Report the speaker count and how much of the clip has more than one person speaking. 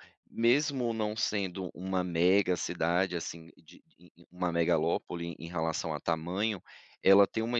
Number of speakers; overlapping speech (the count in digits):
1, no overlap